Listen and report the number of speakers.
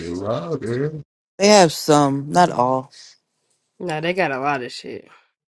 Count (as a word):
three